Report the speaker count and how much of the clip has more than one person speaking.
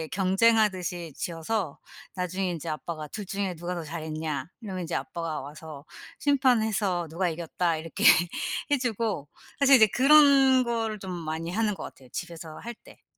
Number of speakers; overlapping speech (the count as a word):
one, no overlap